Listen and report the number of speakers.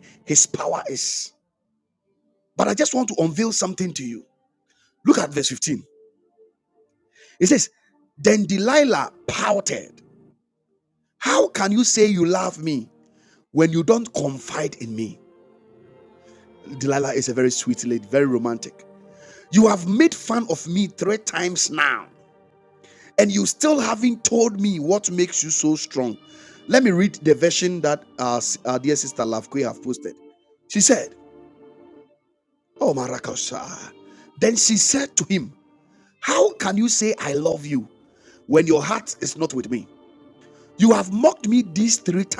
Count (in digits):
1